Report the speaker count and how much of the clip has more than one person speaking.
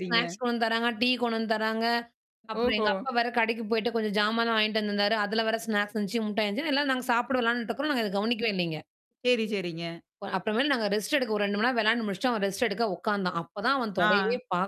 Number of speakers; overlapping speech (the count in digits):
2, about 7%